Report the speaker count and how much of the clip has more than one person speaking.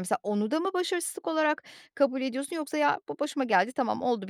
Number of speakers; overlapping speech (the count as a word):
one, no overlap